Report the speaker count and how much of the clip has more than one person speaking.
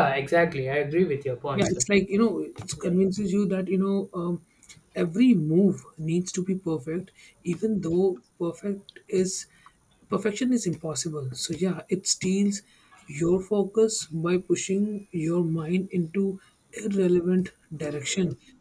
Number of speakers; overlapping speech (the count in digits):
2, about 2%